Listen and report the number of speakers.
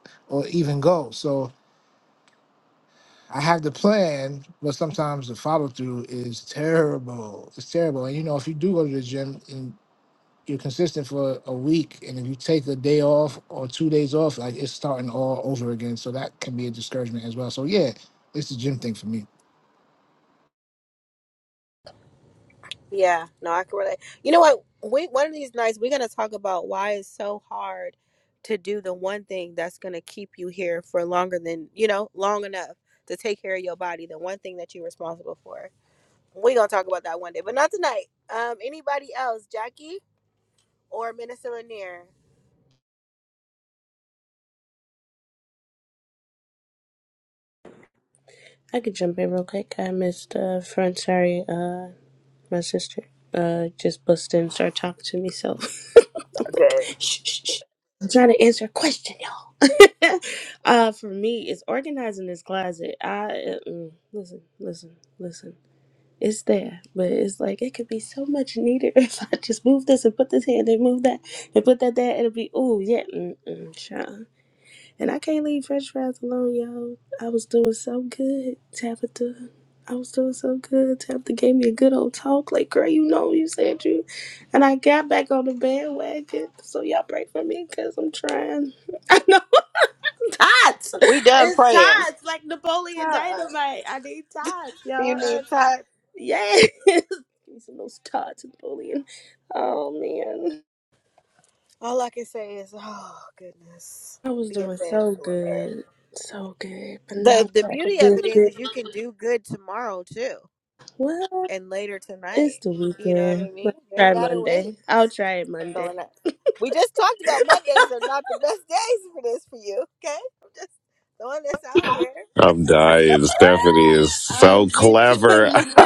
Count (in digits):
4